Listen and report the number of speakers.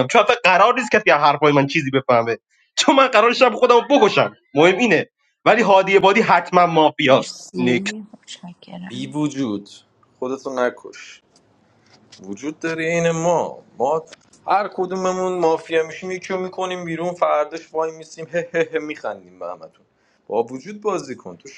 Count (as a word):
three